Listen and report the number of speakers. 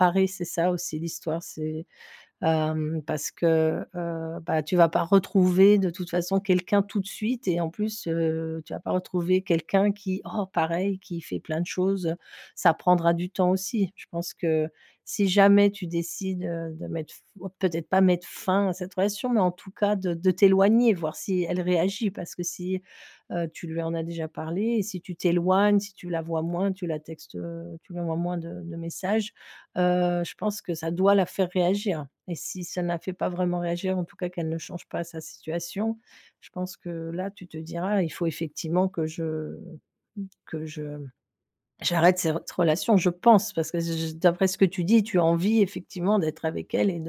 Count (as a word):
one